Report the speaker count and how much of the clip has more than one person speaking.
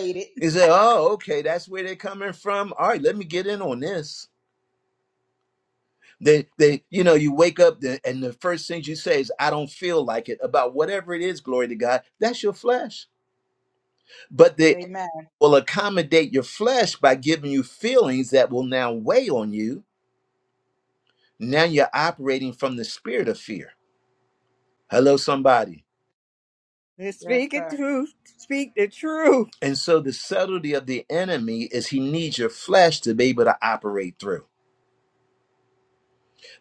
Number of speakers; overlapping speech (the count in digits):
3, about 2%